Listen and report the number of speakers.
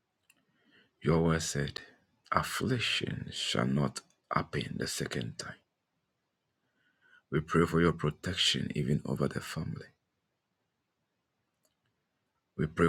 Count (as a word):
one